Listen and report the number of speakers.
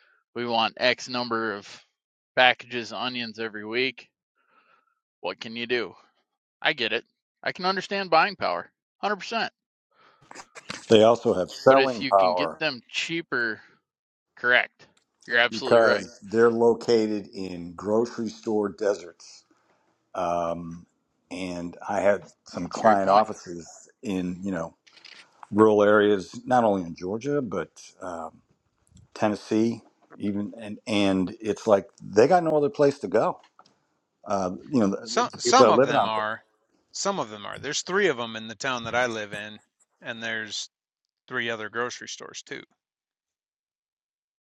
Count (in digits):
3